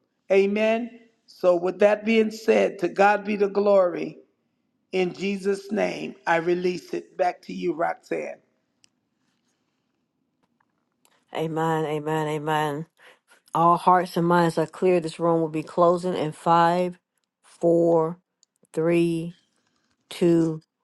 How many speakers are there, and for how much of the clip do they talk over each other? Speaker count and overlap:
2, no overlap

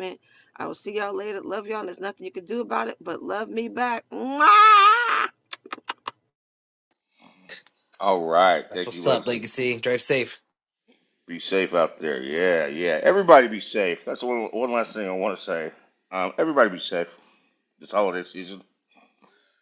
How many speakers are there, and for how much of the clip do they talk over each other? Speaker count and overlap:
3, about 4%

